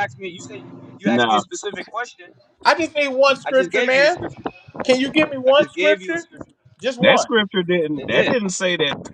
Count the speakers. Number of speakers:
3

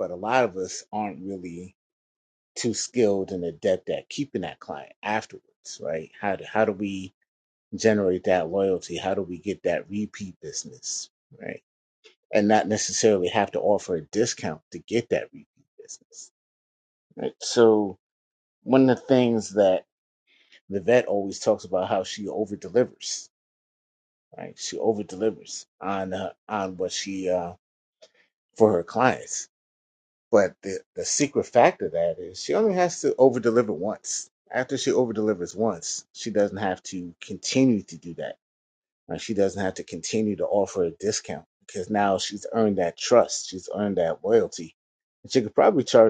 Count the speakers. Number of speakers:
1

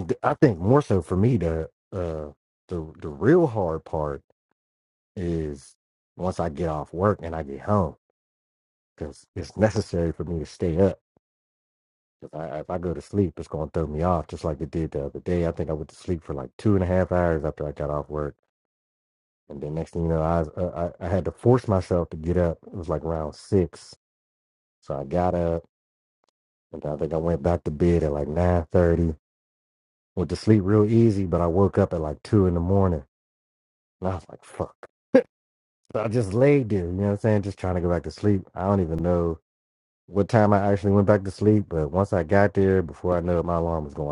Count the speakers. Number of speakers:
1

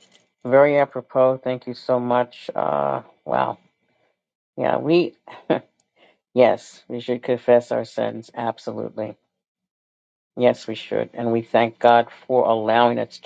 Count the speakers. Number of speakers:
1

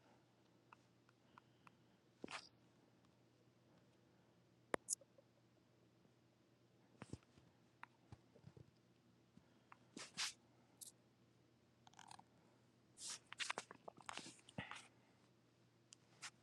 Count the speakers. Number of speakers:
0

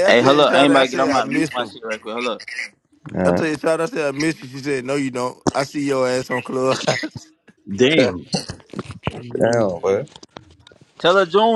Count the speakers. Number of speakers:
4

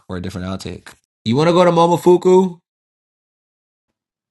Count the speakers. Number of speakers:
1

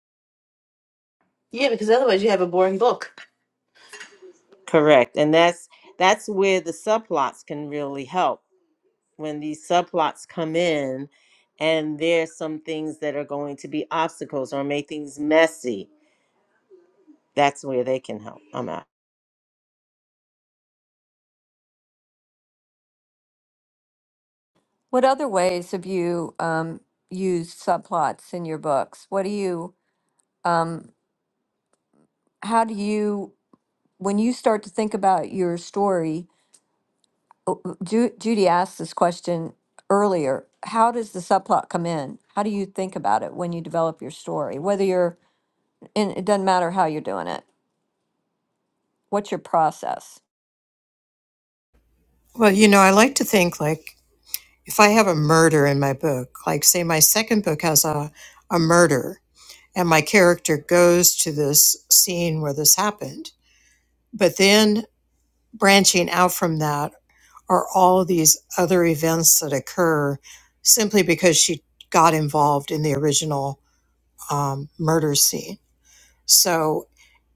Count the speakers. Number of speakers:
4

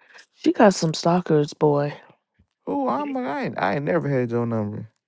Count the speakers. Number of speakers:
2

